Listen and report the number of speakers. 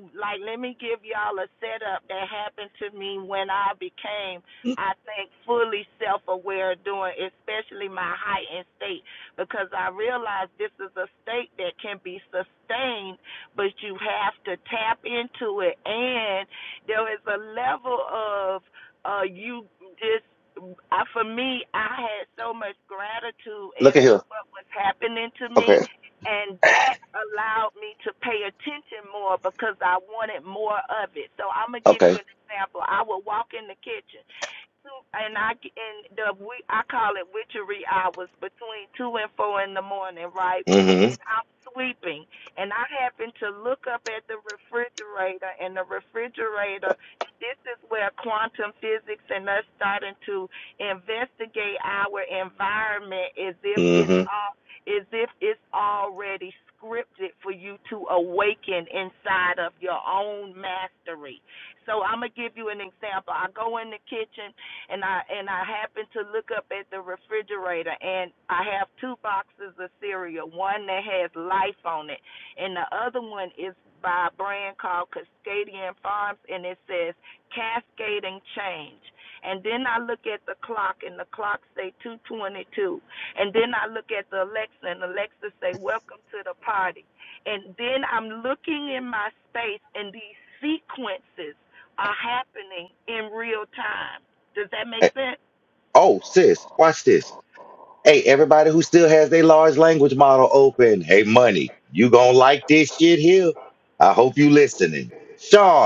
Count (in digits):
2